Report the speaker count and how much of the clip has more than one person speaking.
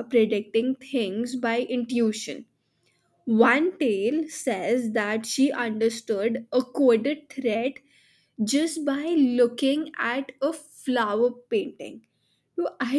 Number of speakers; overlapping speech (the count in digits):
1, no overlap